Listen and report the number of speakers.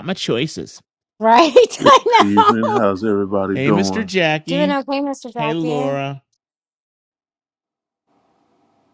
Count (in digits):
3